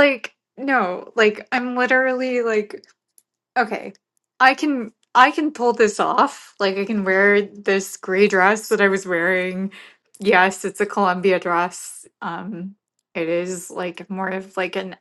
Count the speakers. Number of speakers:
1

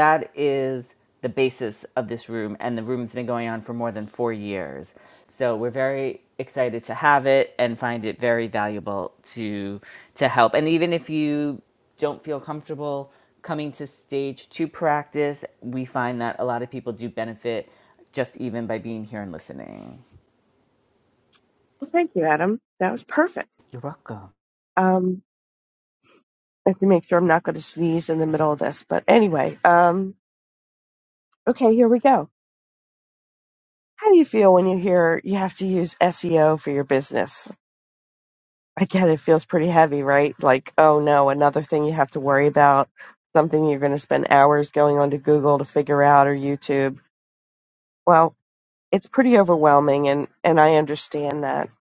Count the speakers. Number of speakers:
2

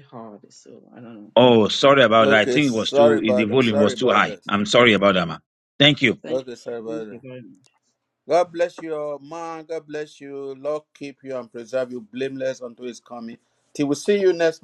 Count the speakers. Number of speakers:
3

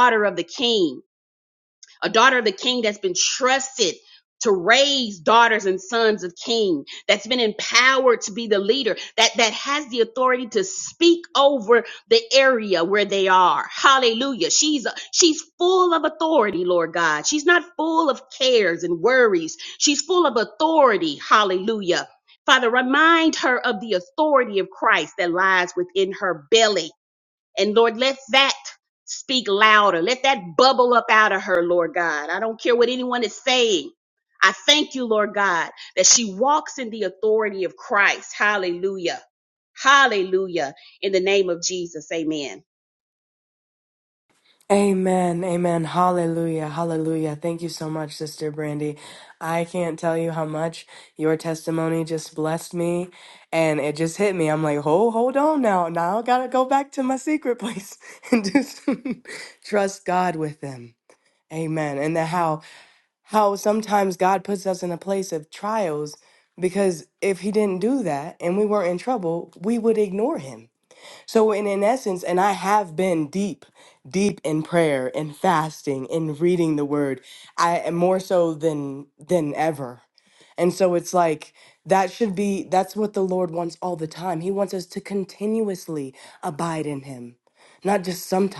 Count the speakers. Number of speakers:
2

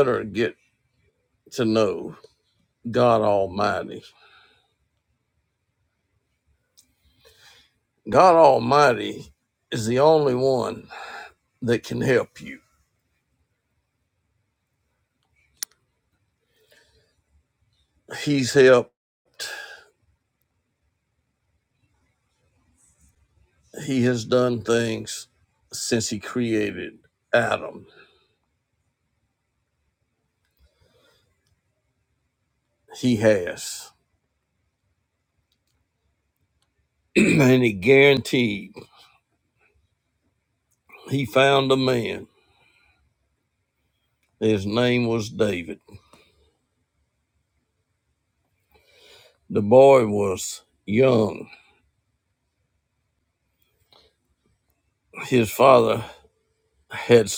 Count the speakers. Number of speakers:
1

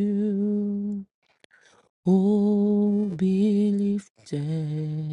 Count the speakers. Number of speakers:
1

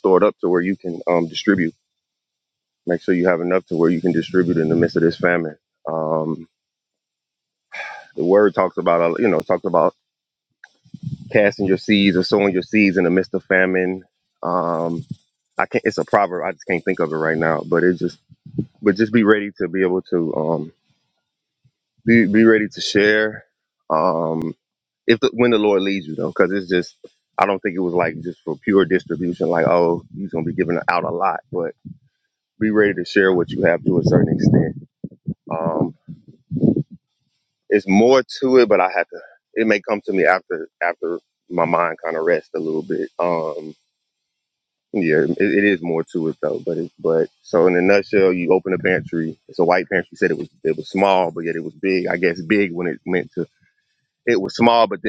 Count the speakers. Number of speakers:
1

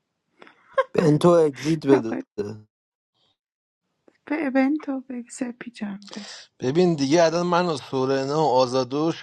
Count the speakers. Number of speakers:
3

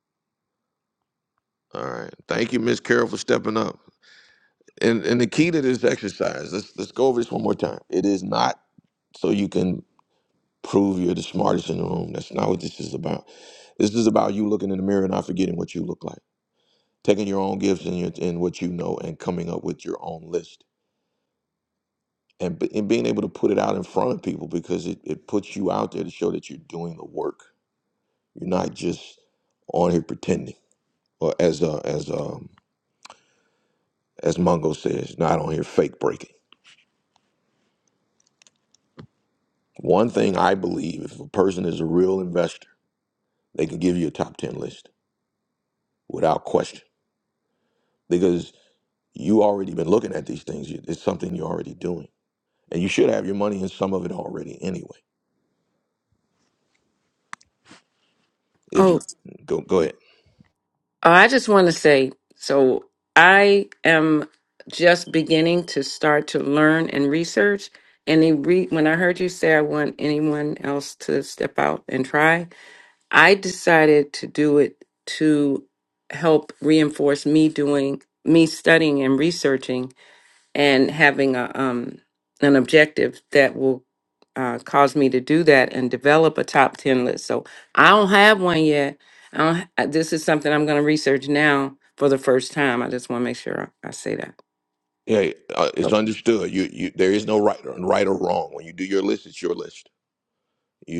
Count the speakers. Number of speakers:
2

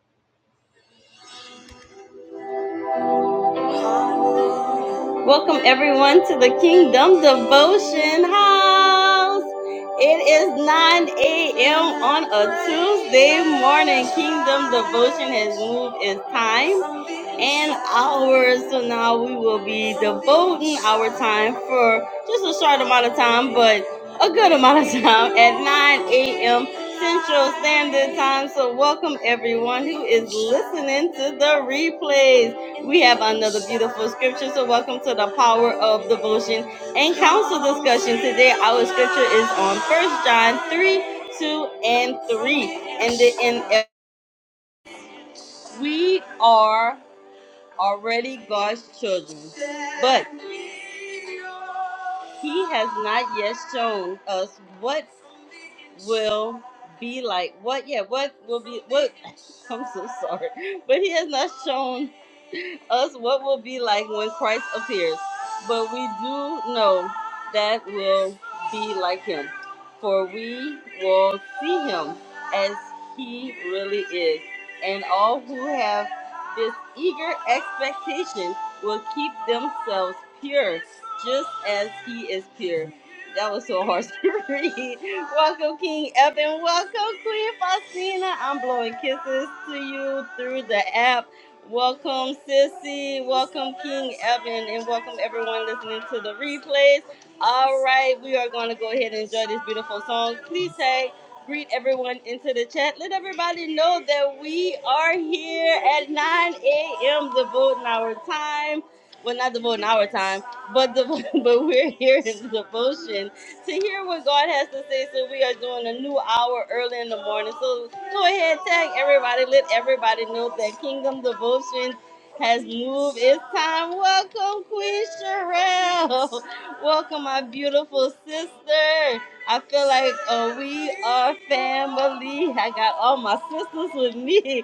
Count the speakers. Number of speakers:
1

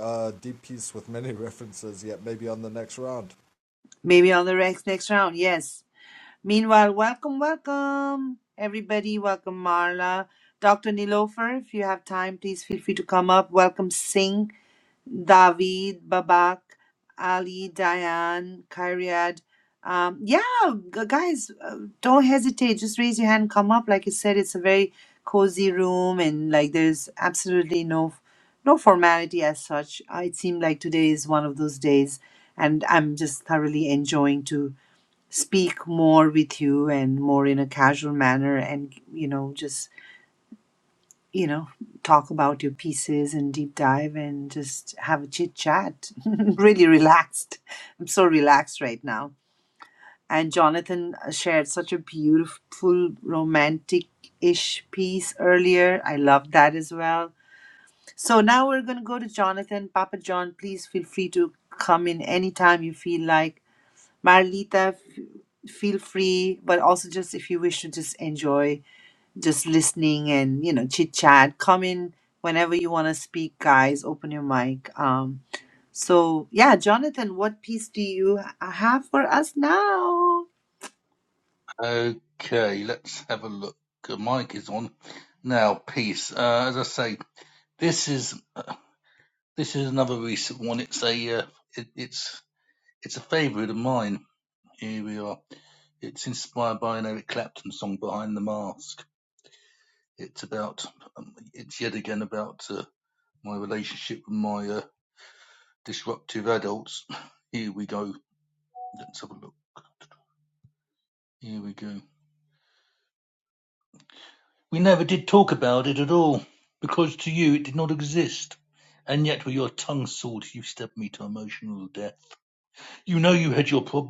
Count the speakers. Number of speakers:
3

